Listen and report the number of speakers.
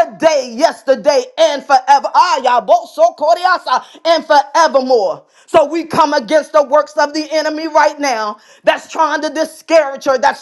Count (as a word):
one